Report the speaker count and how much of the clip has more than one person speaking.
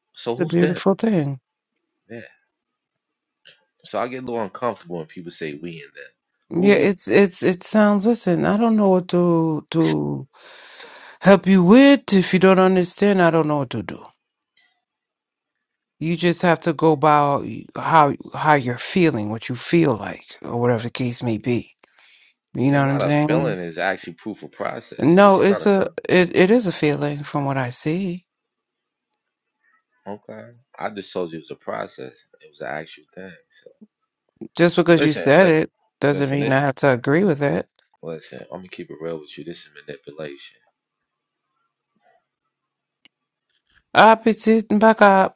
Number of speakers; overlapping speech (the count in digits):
2, about 8%